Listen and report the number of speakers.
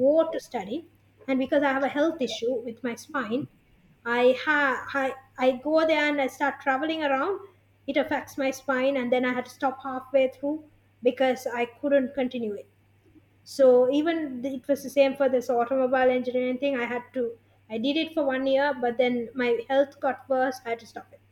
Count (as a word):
one